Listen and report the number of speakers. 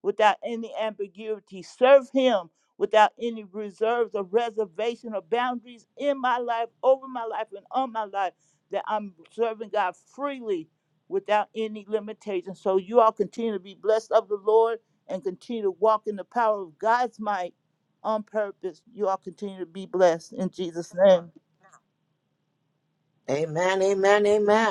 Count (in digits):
2